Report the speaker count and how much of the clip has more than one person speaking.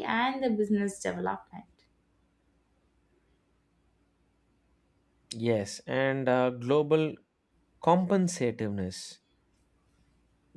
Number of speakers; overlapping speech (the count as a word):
two, no overlap